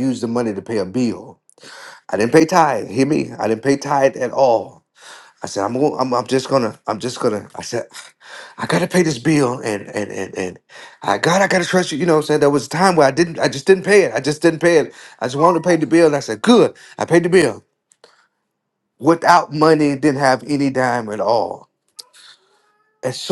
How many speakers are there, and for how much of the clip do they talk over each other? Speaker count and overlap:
1, no overlap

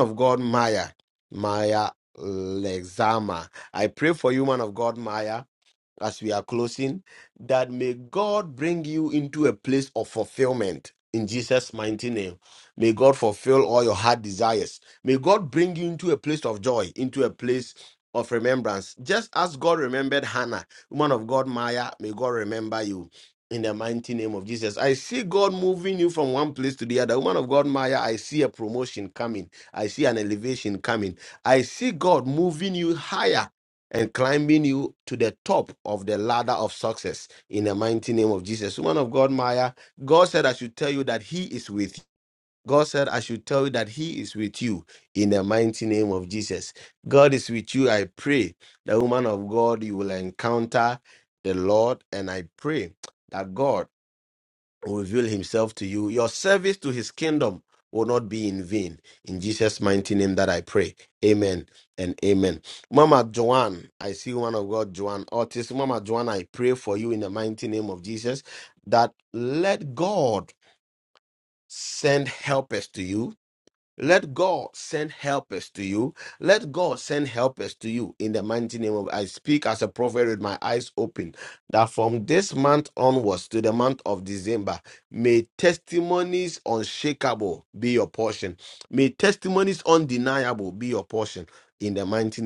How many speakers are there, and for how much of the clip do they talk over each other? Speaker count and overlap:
1, no overlap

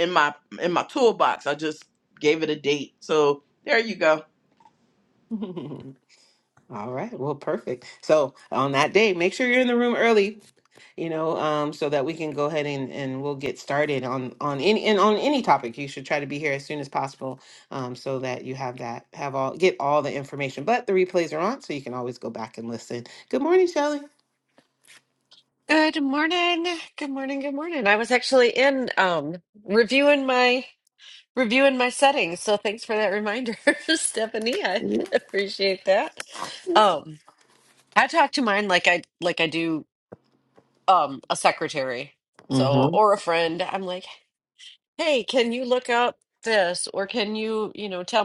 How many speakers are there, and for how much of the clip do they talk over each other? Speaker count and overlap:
3, about 1%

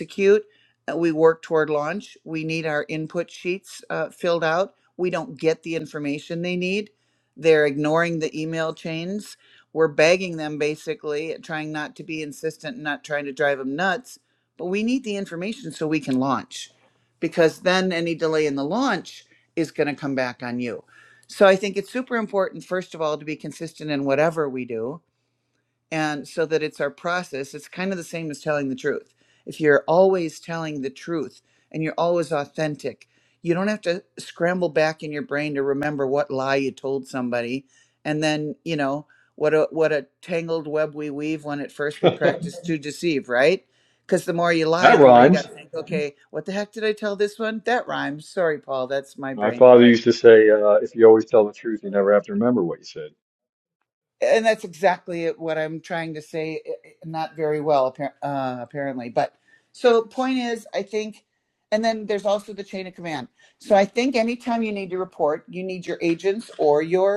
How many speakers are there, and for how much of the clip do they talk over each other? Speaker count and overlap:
2, about 2%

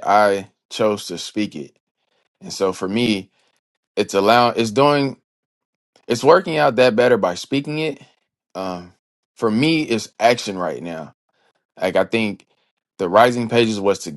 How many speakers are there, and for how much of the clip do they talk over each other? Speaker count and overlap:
1, no overlap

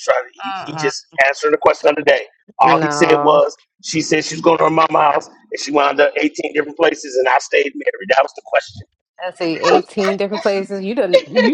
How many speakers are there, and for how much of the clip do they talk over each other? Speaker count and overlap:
2, about 11%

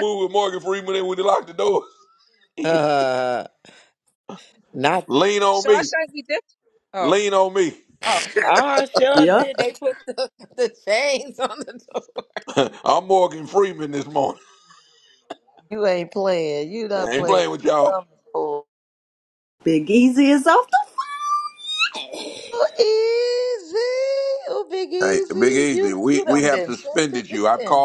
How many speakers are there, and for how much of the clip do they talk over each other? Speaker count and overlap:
5, about 16%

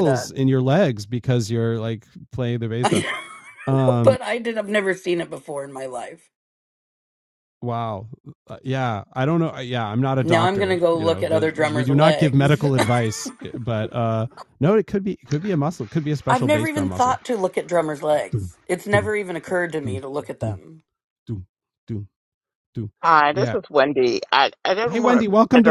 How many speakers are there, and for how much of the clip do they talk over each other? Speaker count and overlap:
3, about 21%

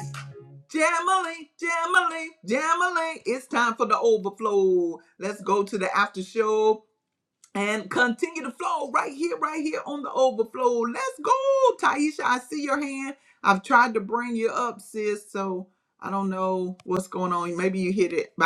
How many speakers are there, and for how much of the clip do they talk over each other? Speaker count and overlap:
1, no overlap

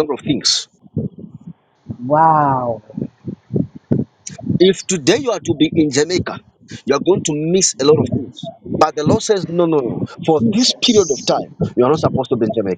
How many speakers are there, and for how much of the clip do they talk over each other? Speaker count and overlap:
2, about 5%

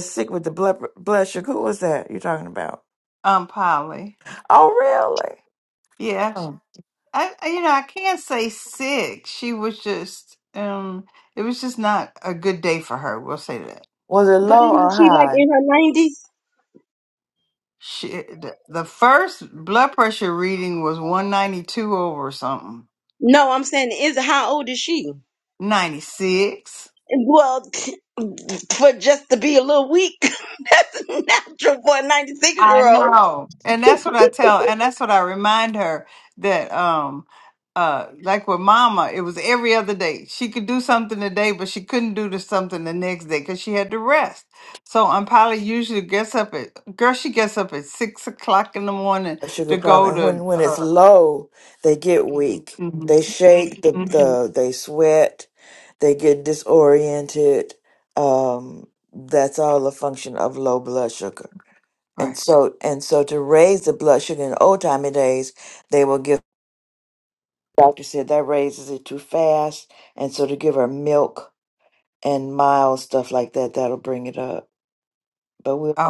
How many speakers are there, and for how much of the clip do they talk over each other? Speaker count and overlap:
3, about 5%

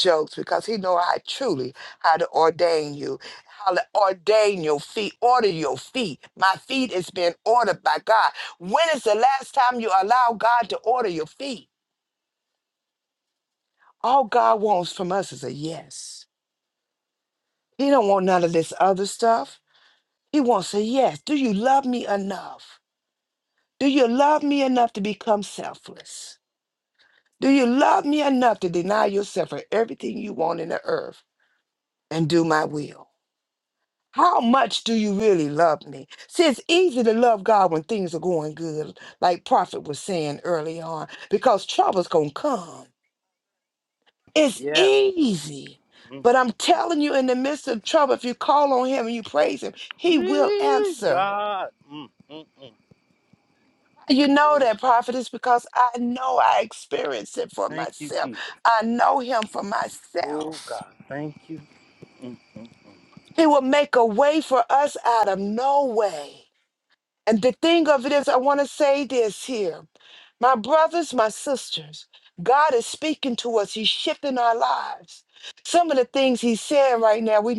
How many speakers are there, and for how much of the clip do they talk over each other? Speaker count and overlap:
2, about 4%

